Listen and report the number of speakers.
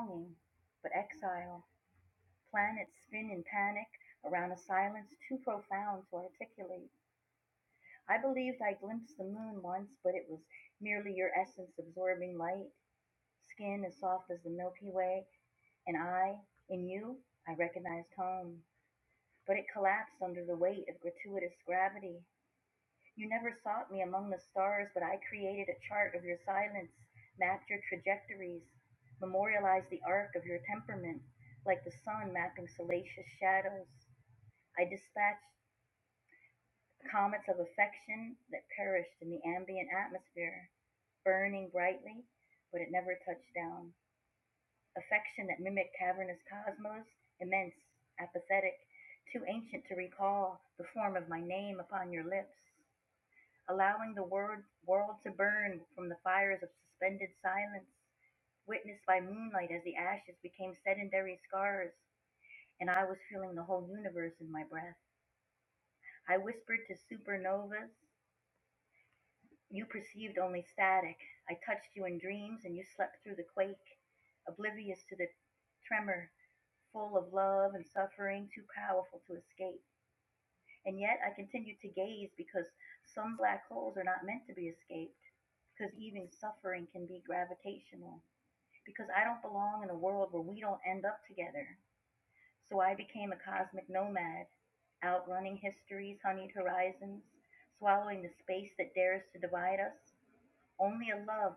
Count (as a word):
one